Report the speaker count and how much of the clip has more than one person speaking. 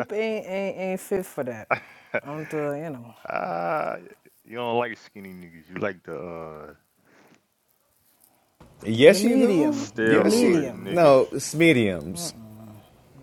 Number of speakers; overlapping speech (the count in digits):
3, about 15%